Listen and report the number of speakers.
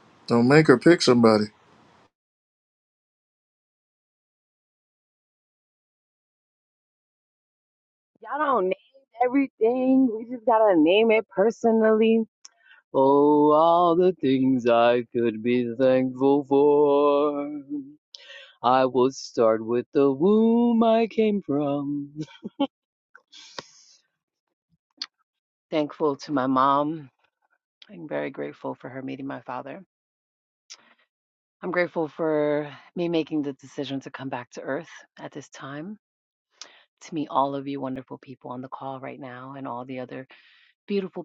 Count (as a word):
two